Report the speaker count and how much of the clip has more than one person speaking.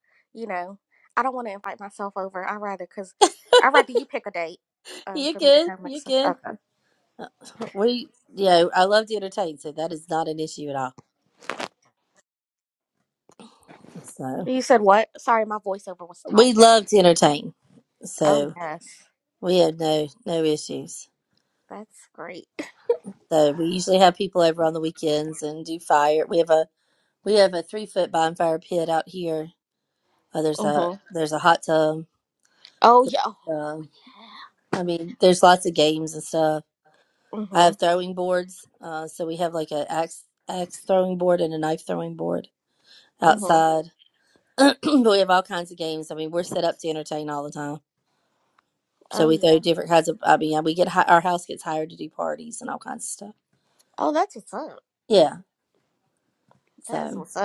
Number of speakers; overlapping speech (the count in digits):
2, about 6%